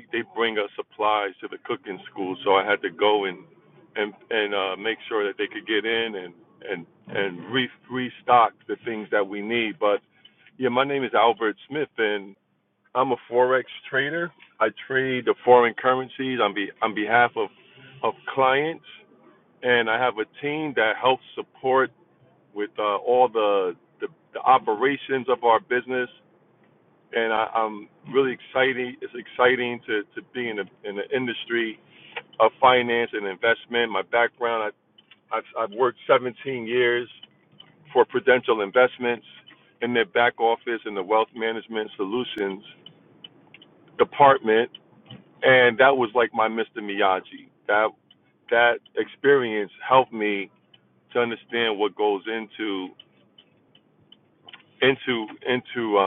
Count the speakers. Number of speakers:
1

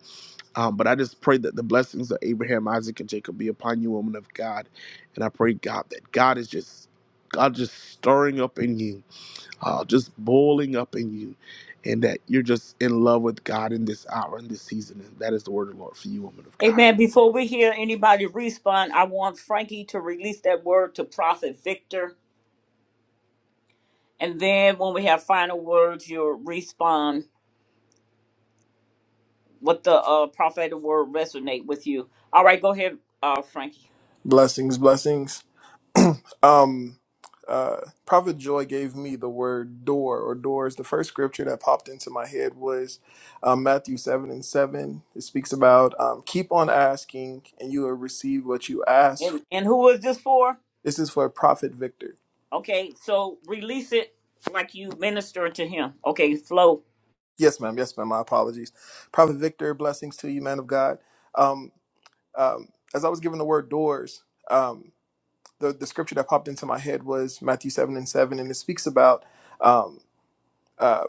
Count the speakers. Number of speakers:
3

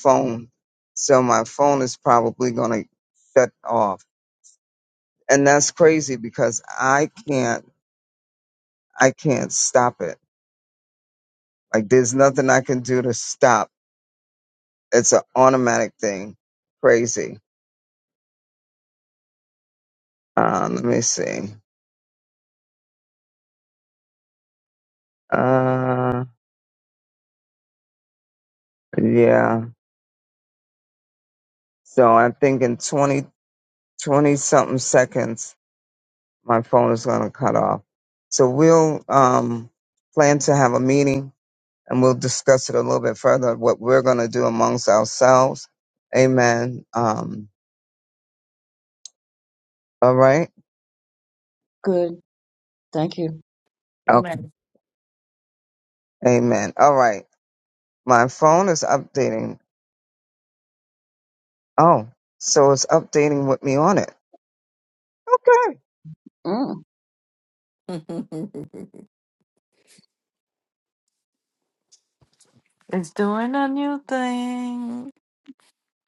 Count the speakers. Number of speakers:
3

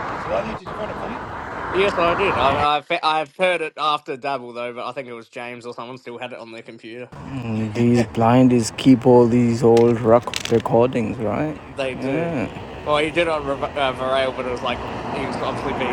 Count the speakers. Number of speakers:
3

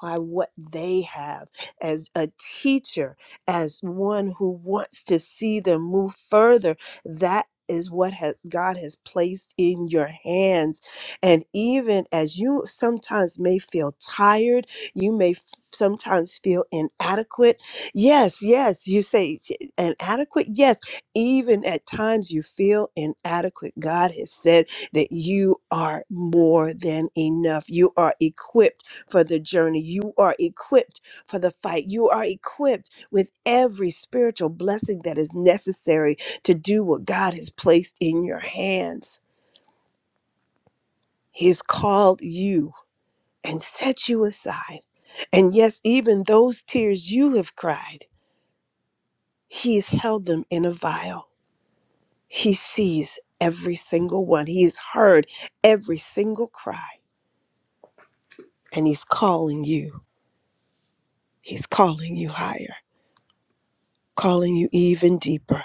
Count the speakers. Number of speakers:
1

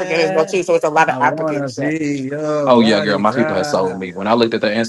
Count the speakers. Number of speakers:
3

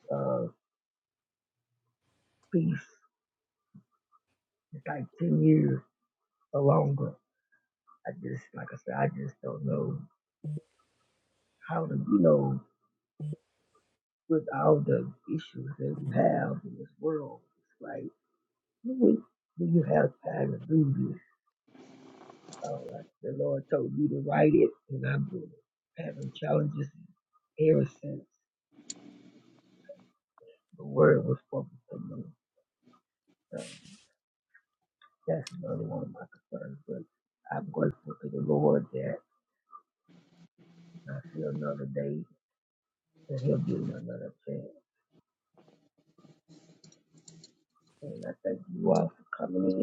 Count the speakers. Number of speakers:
1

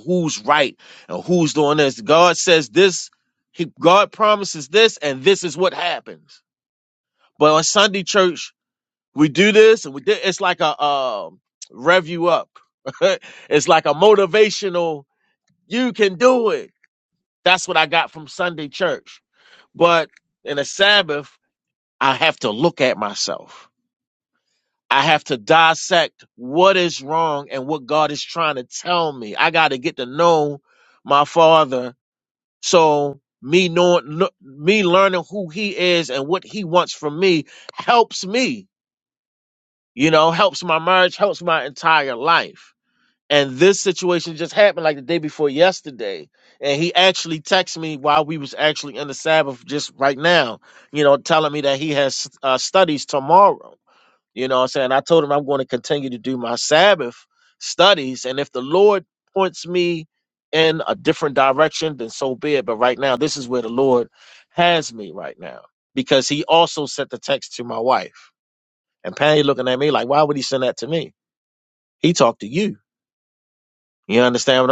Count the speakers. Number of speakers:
1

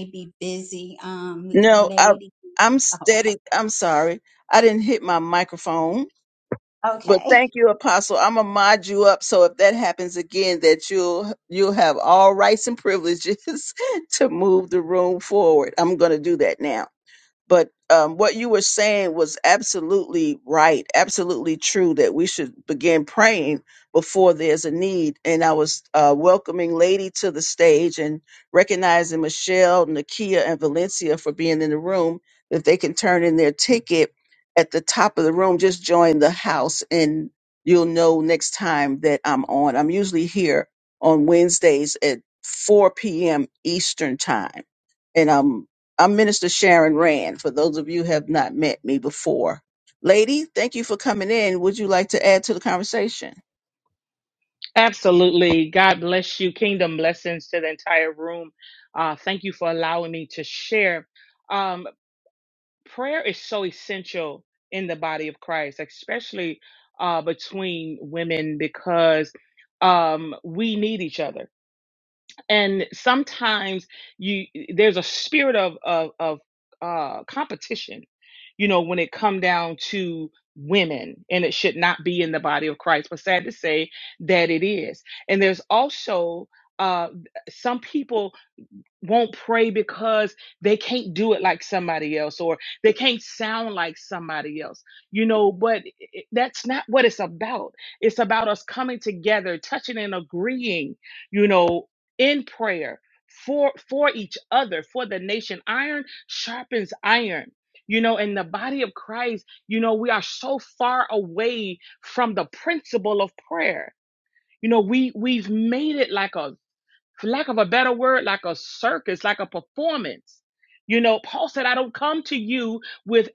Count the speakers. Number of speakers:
3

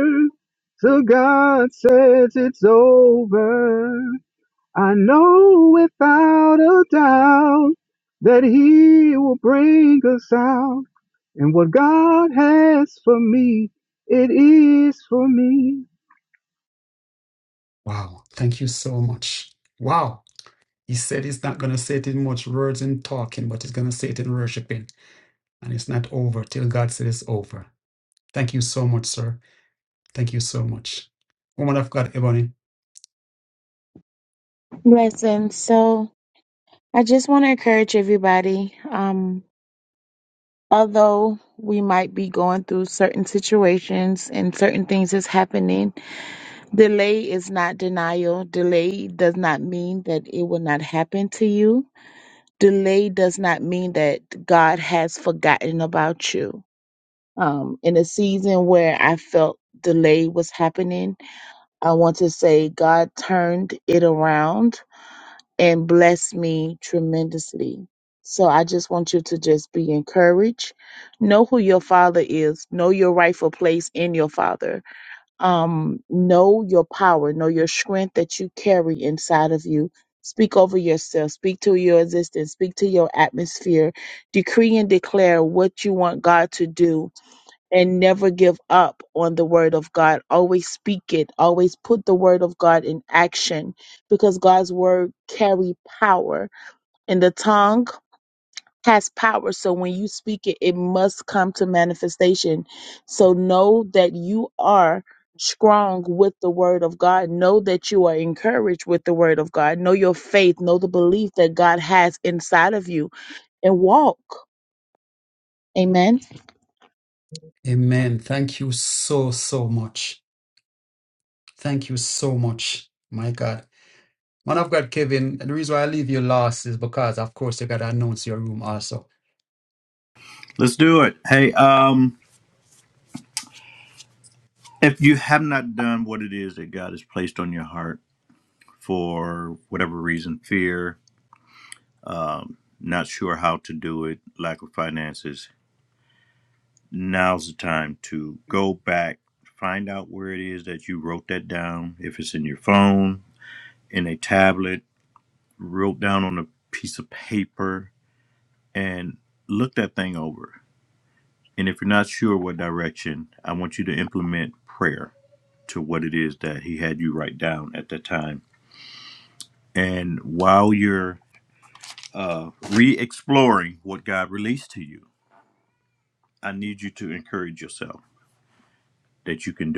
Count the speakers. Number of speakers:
4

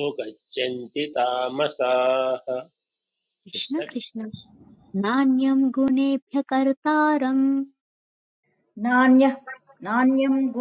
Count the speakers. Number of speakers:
3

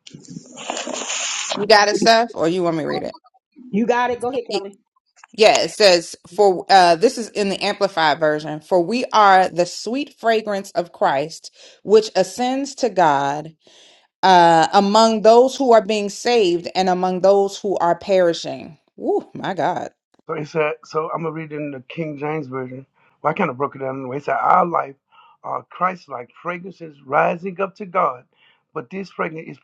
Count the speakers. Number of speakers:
3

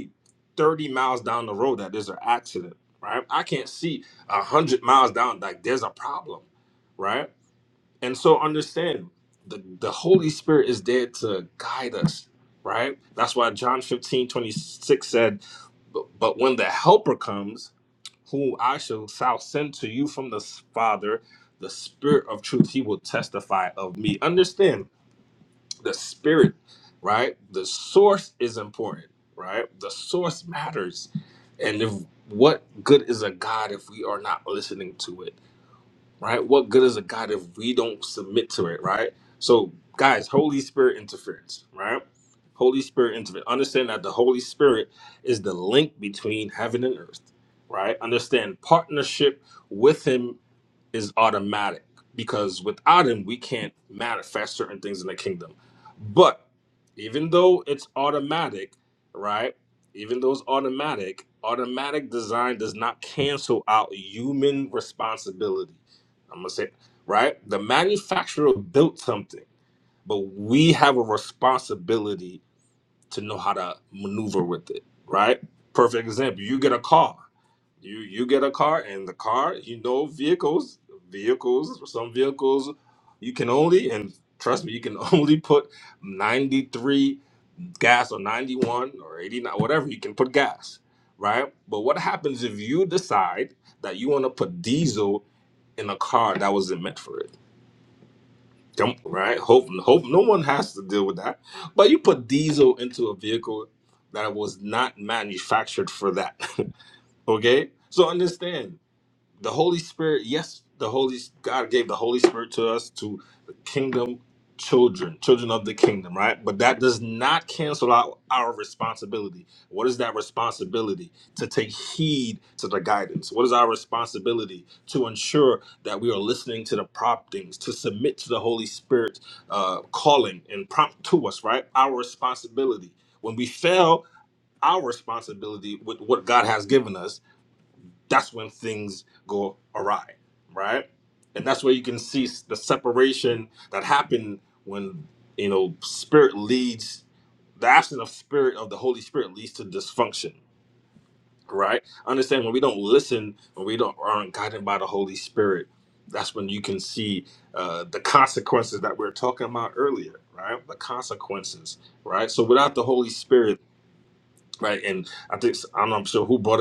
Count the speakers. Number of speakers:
1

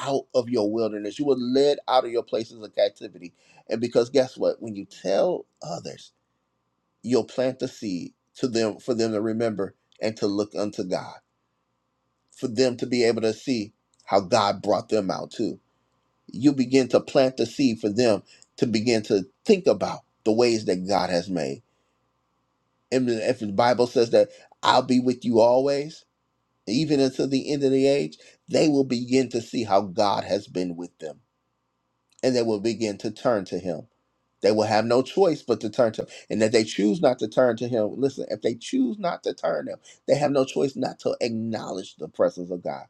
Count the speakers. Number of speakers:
1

